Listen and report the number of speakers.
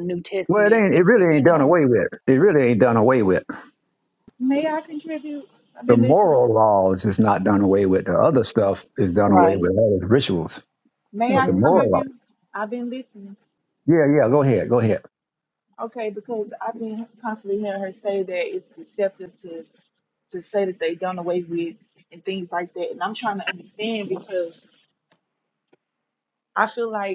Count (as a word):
three